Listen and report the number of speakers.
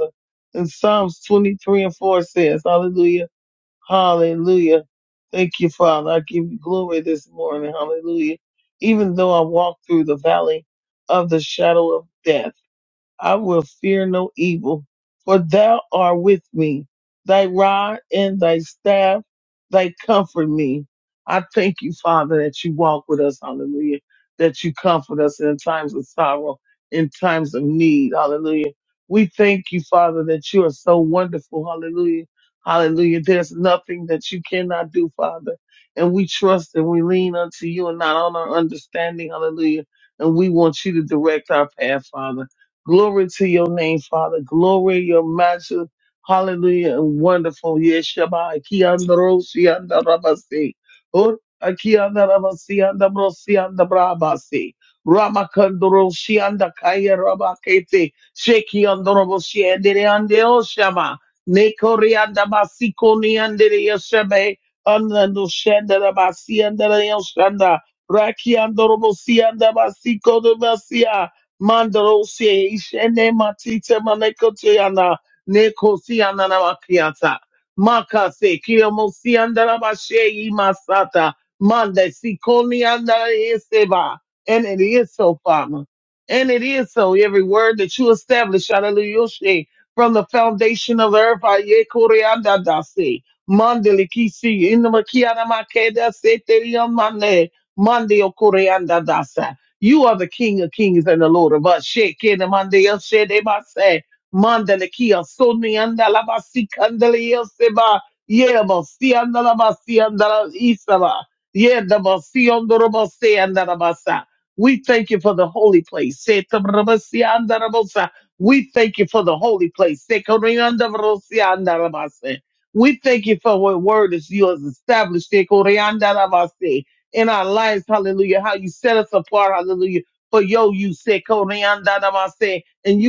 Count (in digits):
1